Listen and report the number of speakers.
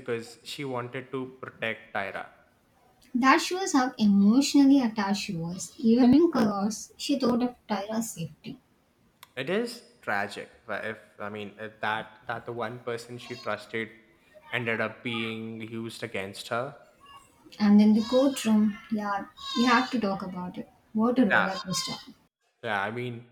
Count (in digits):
2